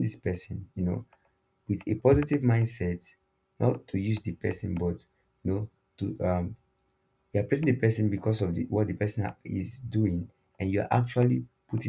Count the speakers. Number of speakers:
one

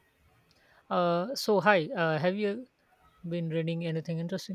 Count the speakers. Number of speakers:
one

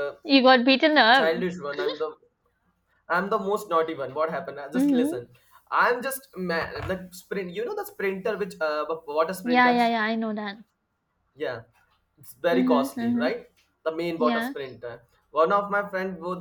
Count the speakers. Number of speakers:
two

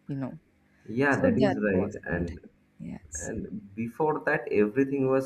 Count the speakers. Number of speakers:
two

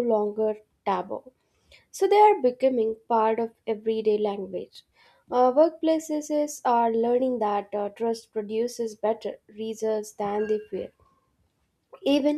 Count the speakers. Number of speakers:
one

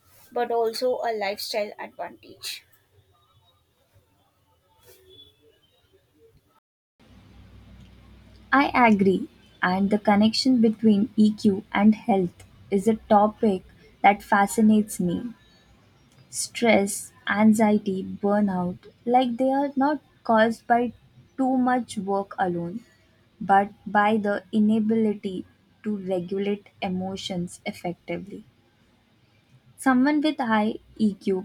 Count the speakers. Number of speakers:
two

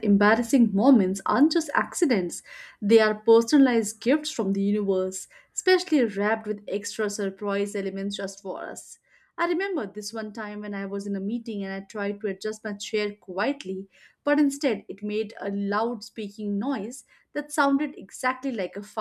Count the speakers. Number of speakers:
one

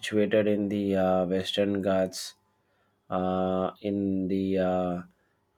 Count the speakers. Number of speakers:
one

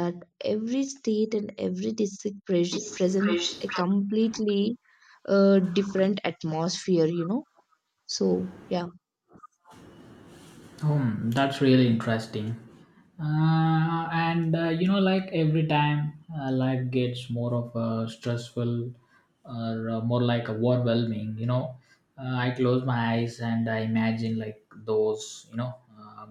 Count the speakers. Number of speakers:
two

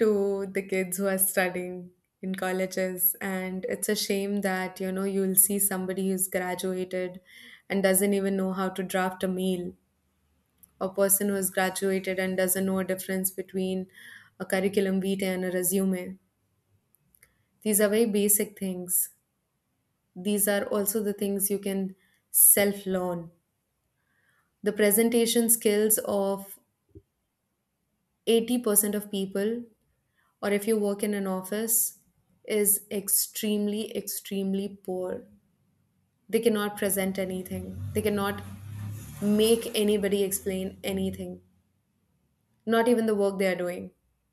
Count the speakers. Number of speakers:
one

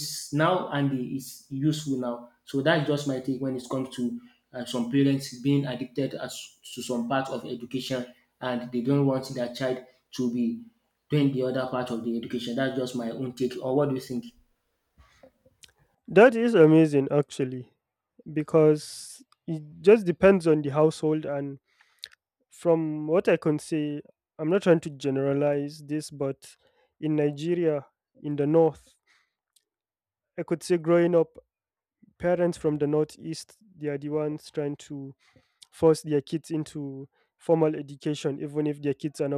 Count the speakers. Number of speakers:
two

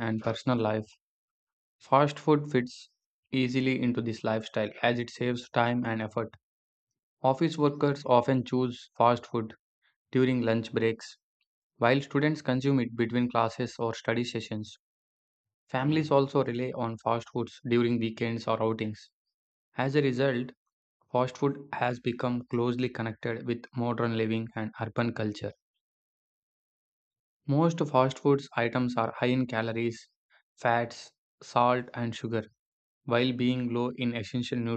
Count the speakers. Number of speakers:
one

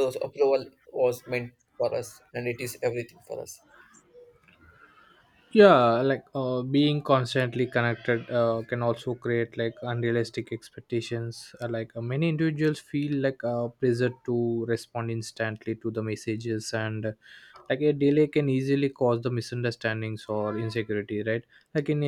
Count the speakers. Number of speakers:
two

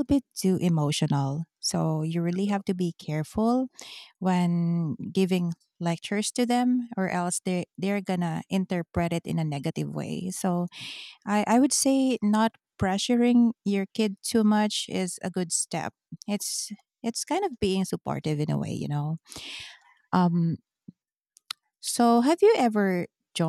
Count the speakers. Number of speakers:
one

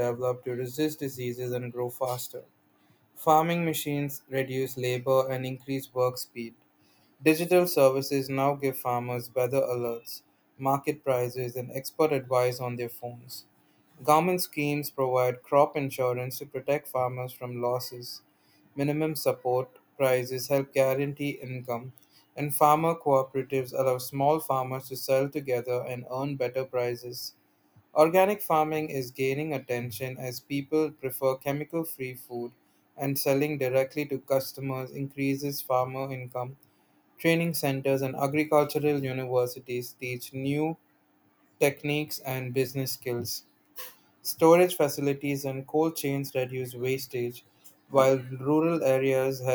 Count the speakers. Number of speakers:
one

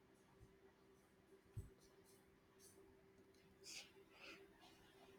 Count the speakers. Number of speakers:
zero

